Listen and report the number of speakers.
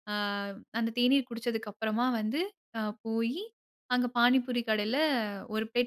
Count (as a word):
one